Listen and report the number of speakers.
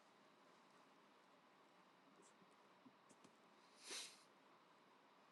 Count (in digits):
0